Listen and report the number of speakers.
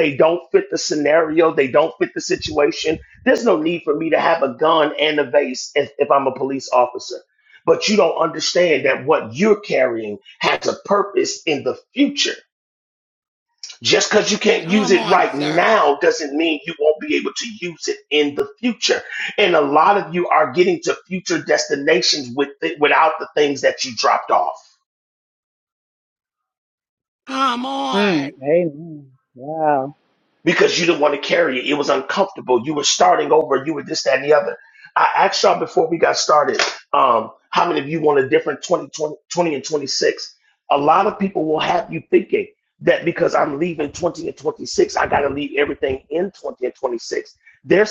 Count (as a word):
three